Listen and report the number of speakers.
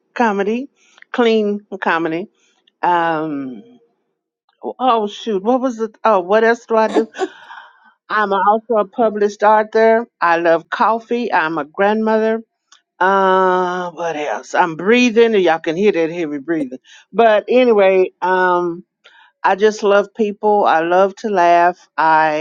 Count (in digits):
1